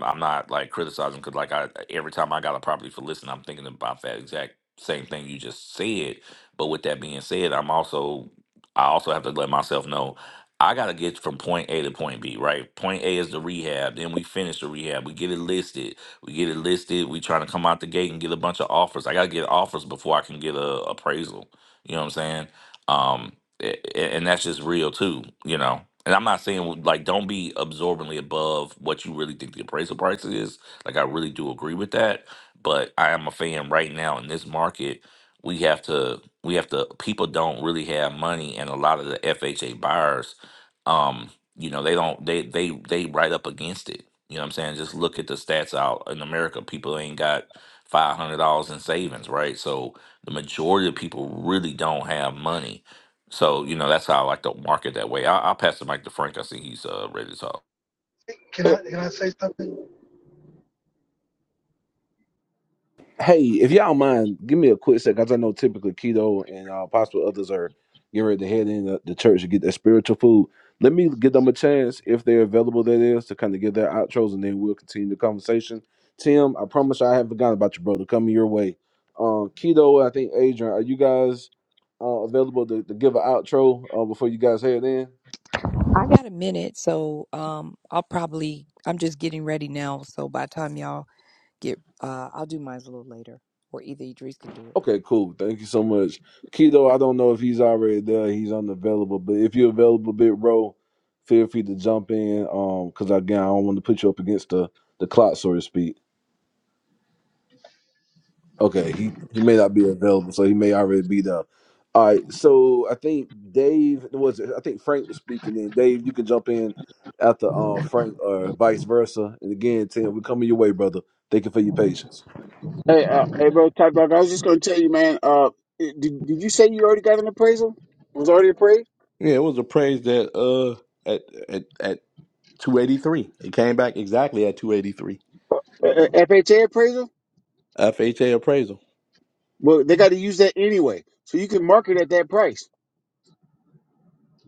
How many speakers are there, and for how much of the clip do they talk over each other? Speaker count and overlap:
6, under 1%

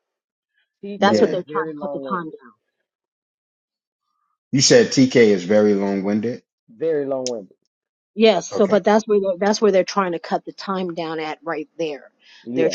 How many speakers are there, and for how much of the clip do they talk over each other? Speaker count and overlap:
3, about 14%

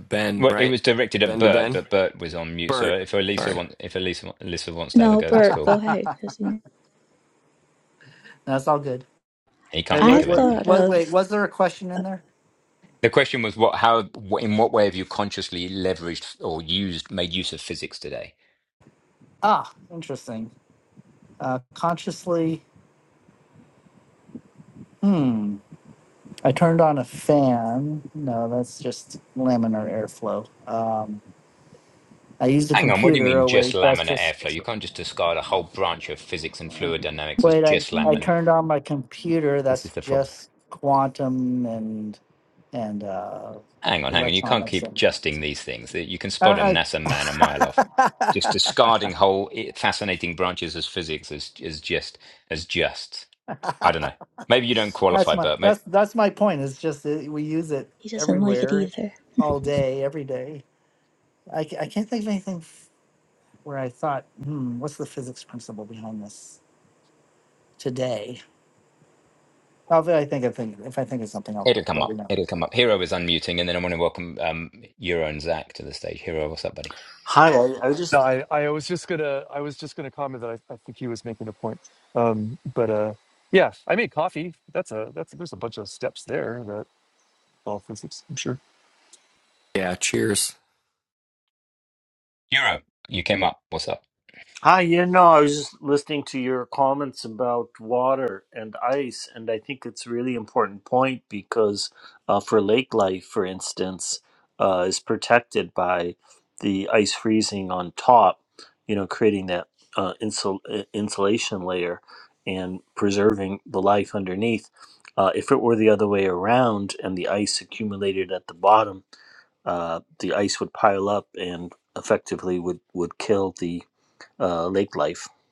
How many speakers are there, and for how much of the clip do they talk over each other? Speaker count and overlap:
6, about 9%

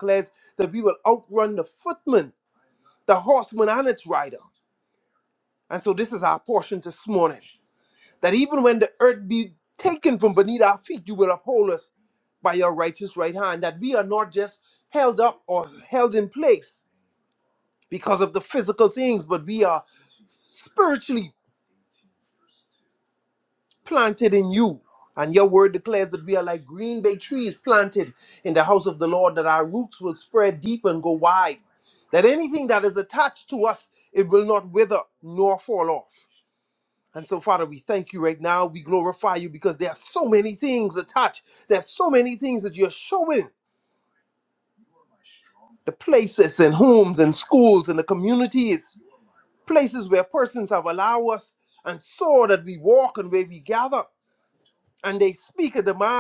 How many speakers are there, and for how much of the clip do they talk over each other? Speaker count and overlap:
1, no overlap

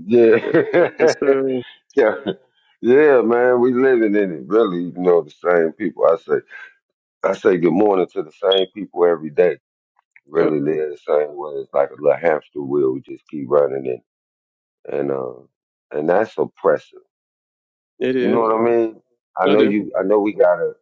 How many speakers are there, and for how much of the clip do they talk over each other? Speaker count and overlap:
2, about 5%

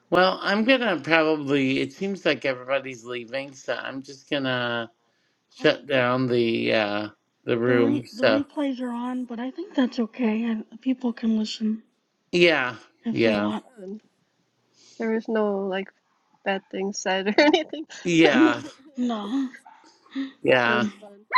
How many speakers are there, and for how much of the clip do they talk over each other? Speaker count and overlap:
3, about 8%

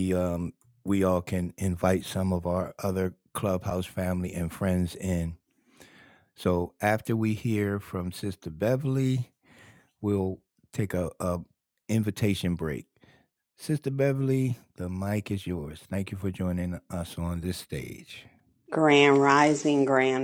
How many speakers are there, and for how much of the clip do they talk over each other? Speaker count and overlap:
2, no overlap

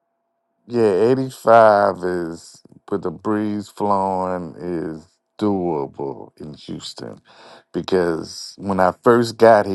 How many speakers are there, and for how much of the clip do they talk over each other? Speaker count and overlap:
1, no overlap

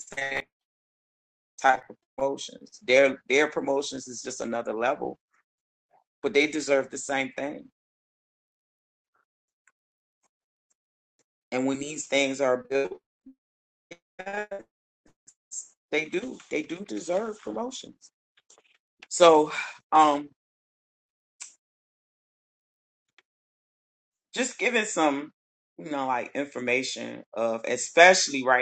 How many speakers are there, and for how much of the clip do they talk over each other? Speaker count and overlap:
1, no overlap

